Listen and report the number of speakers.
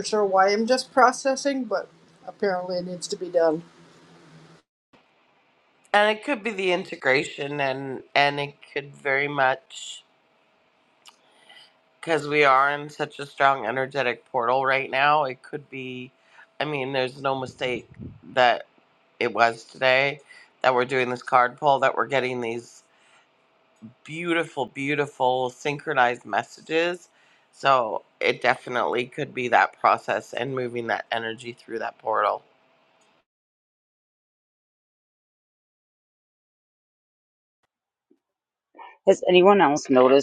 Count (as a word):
three